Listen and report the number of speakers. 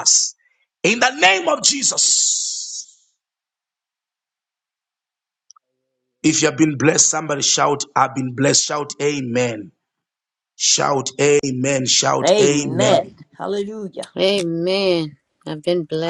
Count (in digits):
3